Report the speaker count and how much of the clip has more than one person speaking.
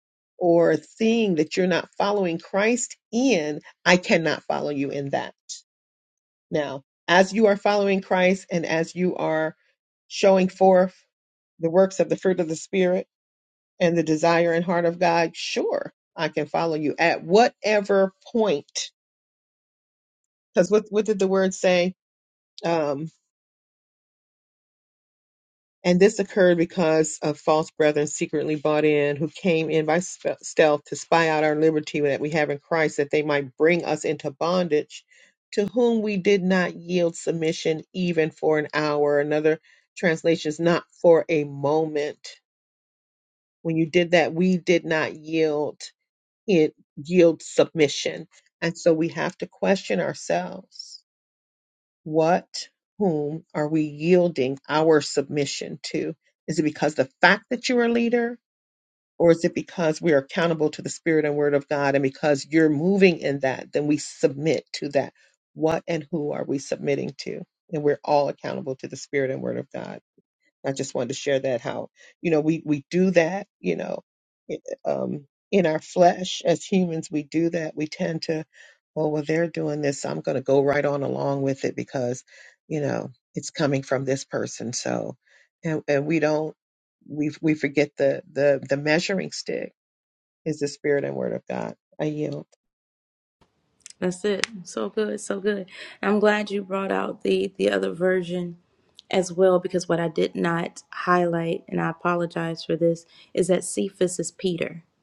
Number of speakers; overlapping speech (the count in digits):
2, no overlap